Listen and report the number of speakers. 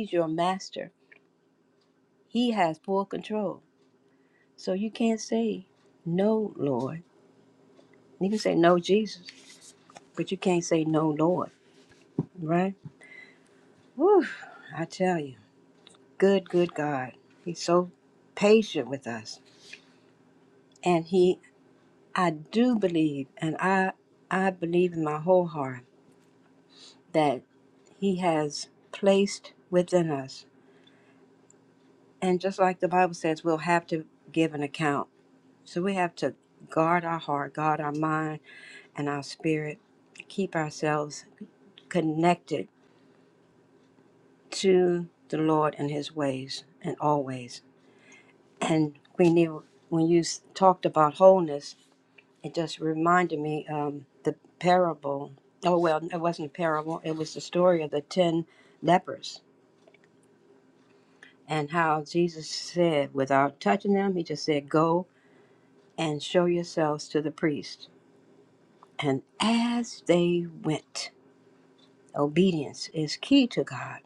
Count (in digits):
1